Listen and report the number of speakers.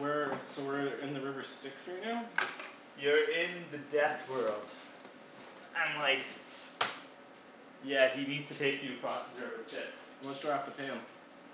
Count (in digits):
2